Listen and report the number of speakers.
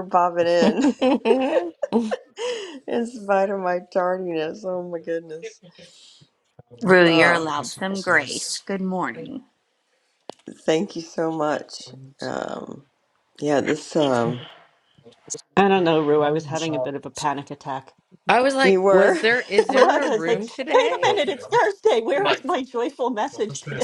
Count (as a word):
four